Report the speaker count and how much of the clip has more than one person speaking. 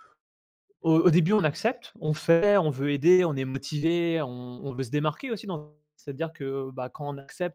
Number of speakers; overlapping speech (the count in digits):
1, no overlap